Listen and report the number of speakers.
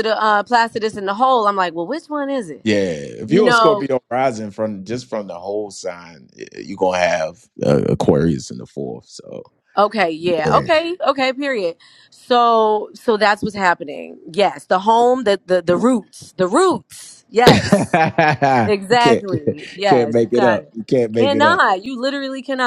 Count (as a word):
two